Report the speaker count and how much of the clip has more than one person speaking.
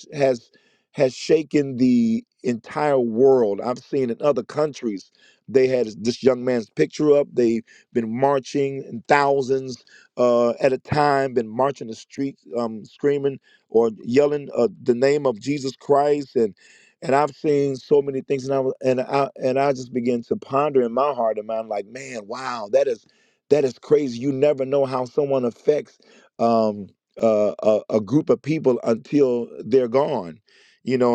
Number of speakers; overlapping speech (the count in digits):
1, no overlap